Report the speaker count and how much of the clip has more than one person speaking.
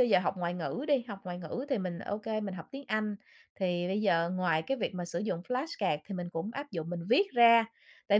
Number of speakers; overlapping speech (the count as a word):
one, no overlap